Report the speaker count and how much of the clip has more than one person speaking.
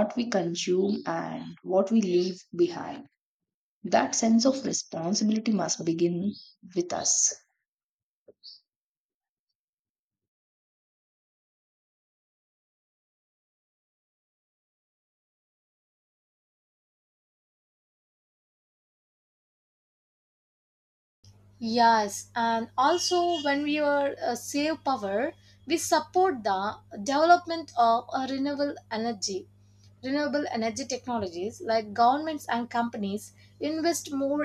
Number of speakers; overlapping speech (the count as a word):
two, no overlap